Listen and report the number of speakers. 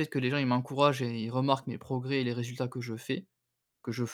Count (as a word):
one